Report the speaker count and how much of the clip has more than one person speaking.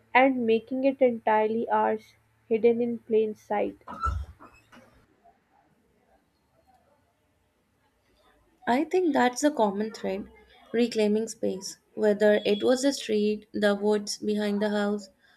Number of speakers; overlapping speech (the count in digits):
2, no overlap